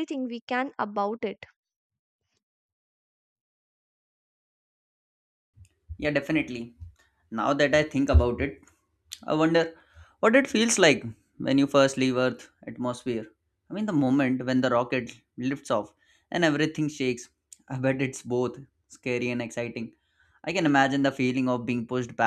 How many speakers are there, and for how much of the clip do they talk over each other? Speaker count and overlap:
2, no overlap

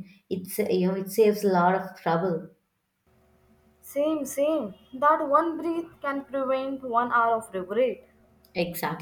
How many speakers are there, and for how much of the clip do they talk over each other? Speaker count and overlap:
2, no overlap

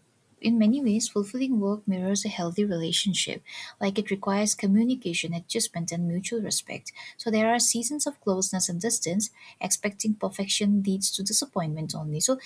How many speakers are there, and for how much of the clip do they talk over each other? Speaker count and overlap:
1, no overlap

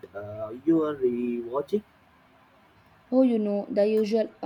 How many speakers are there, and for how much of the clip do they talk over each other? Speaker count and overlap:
2, no overlap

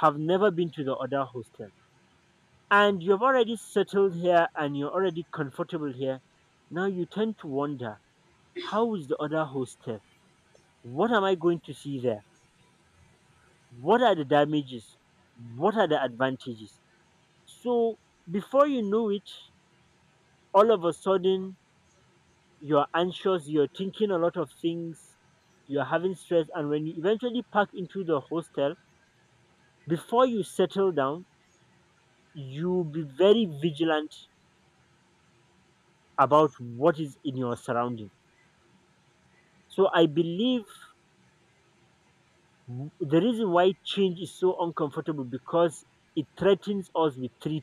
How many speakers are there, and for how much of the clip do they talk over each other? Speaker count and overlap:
1, no overlap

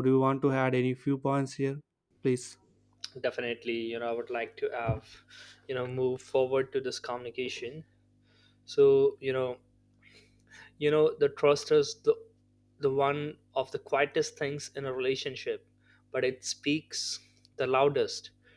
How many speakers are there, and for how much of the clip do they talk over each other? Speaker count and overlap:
2, no overlap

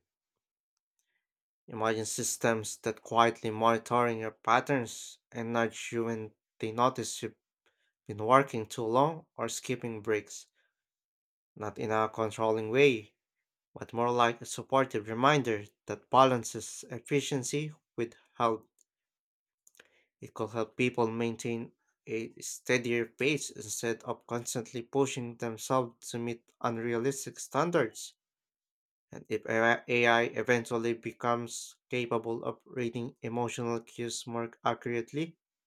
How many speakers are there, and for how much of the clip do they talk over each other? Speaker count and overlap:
1, no overlap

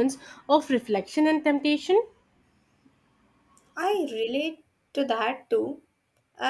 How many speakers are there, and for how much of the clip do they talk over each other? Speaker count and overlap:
2, no overlap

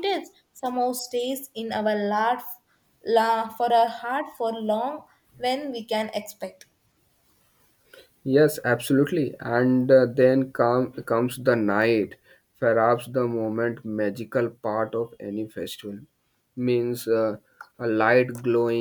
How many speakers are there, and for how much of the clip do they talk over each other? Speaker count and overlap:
2, no overlap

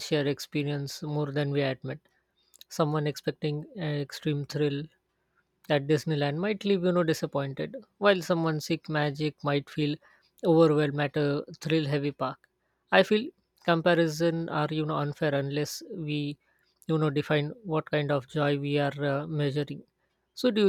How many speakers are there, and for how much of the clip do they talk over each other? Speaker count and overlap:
1, no overlap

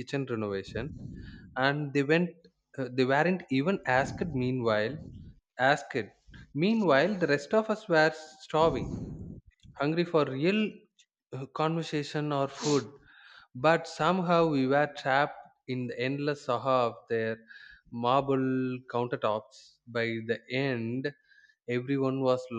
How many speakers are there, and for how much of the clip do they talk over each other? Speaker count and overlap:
1, no overlap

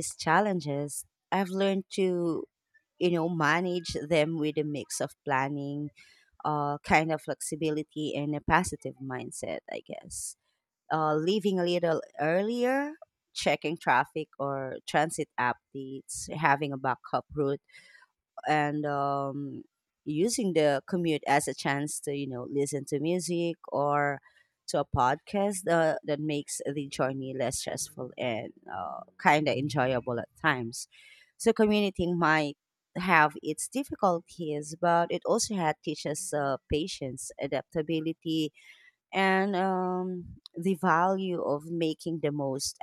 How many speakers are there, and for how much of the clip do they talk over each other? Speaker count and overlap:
1, no overlap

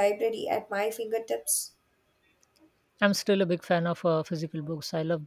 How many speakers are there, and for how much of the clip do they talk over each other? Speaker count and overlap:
2, no overlap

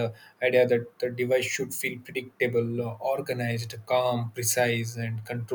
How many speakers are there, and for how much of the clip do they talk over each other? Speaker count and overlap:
1, no overlap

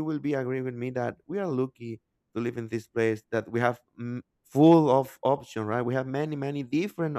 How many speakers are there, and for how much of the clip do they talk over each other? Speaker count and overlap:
1, no overlap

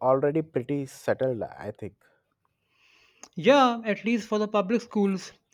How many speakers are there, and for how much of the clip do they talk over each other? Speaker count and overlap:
2, no overlap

